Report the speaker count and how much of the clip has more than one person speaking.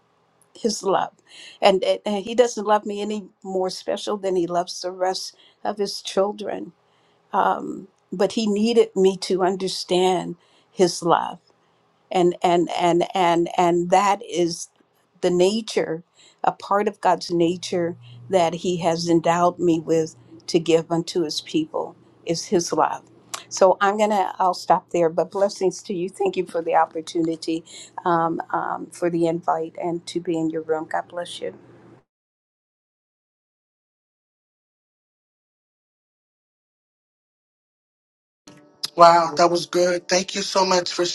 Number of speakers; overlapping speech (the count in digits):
2, no overlap